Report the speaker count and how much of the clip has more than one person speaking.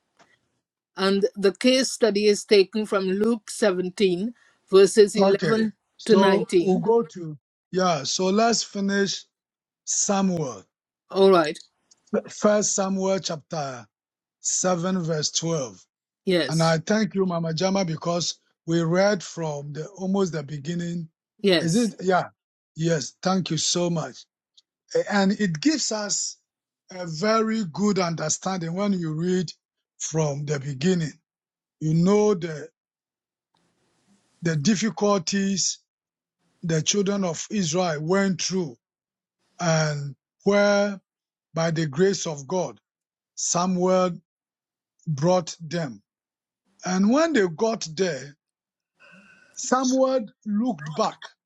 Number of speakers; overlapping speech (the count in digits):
2, about 3%